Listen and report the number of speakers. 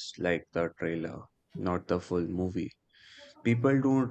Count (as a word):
one